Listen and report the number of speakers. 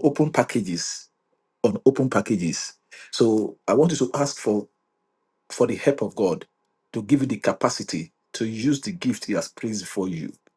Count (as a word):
one